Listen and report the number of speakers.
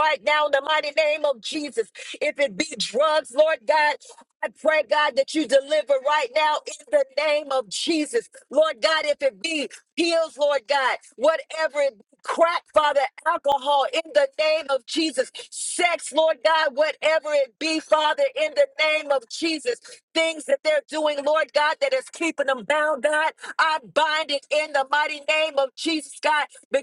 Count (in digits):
1